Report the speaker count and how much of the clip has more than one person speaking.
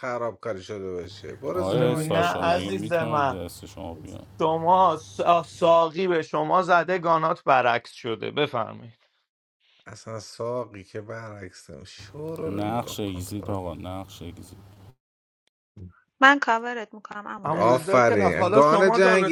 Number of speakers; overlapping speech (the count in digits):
4, about 25%